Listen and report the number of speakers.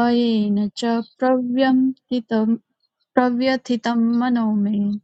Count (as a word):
one